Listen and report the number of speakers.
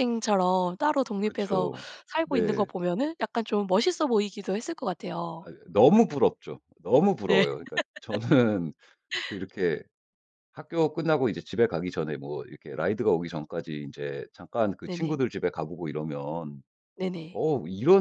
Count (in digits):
2